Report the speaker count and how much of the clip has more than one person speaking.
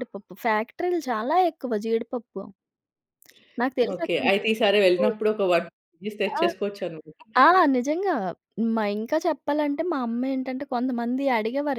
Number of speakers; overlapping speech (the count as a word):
two, about 5%